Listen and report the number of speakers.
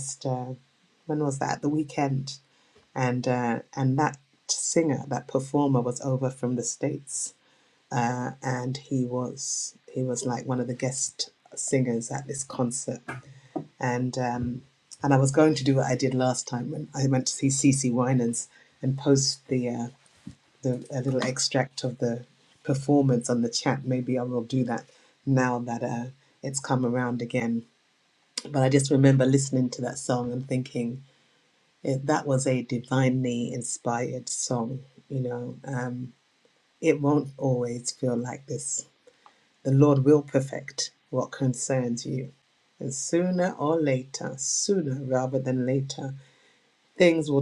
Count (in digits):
1